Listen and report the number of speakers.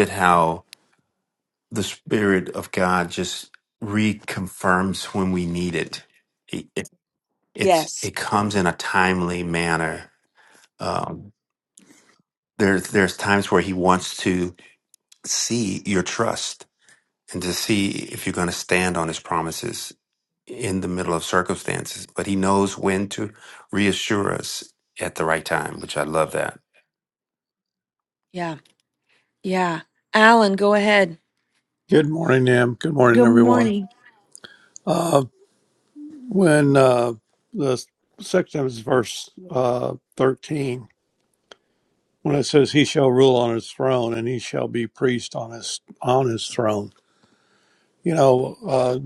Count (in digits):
3